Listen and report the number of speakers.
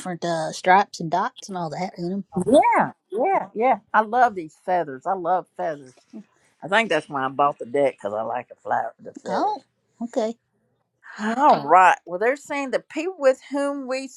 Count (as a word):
two